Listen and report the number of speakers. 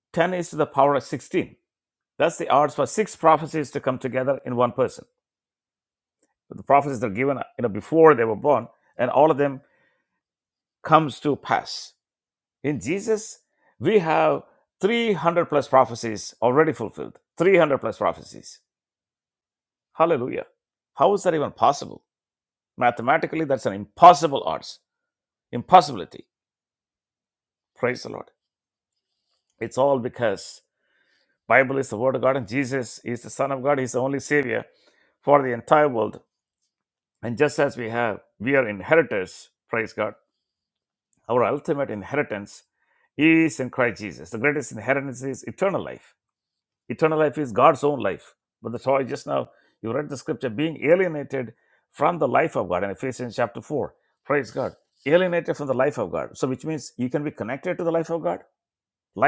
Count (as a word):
one